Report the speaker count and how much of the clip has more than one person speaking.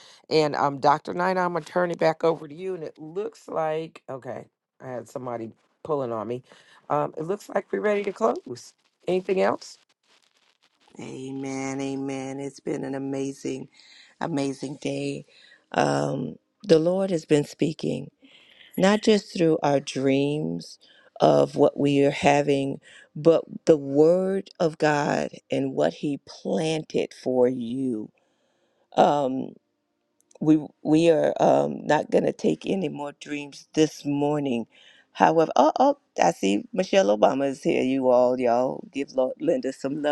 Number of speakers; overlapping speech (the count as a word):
two, no overlap